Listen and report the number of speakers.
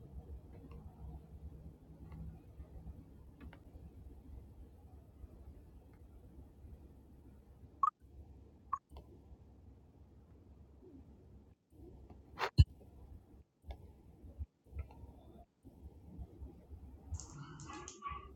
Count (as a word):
zero